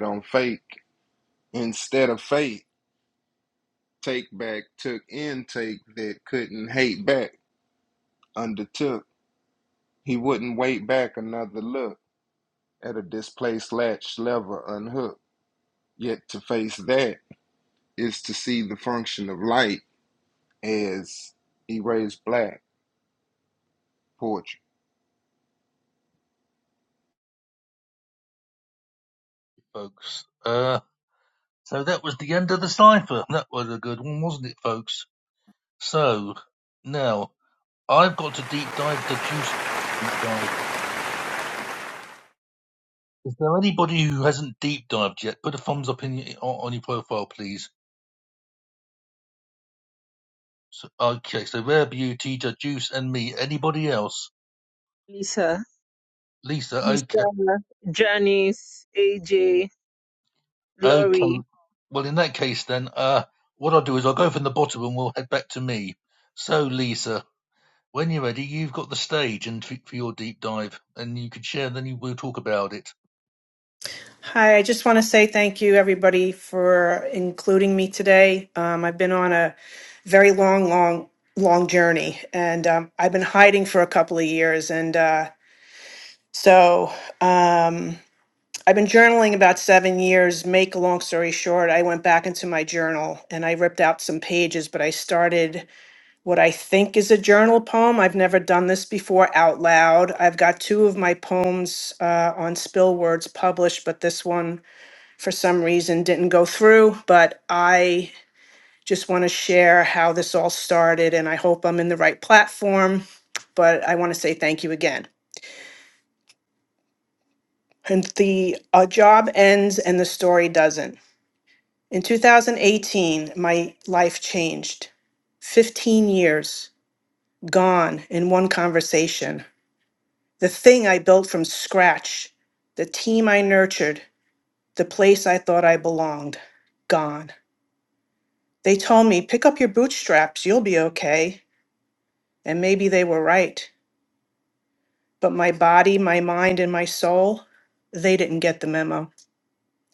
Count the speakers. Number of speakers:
4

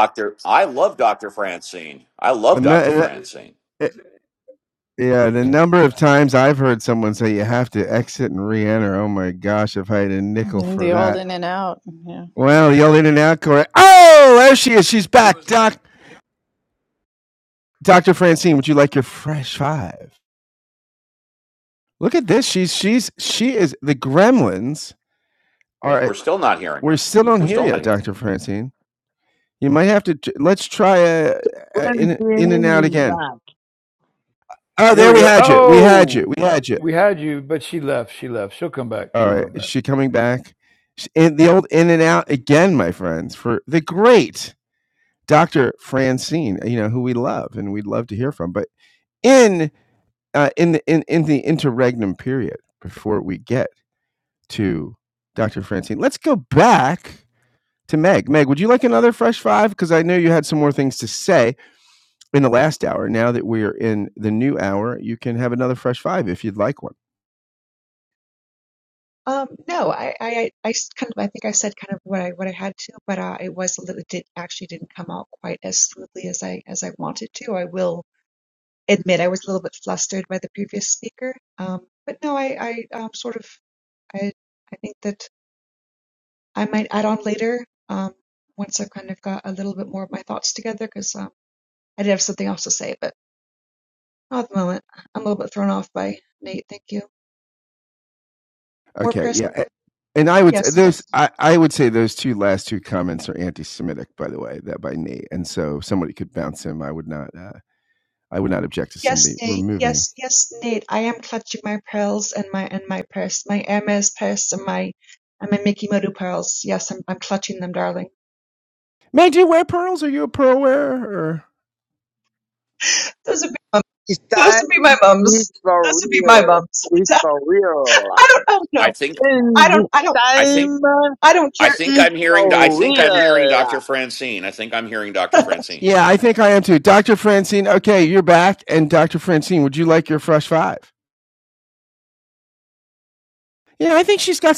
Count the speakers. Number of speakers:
6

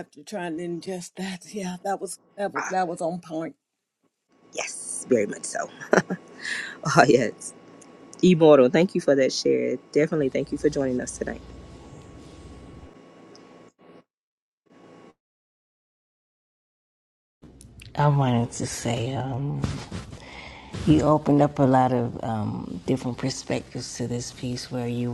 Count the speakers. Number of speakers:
3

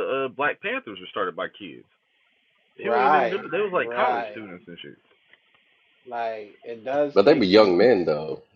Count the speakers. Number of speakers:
3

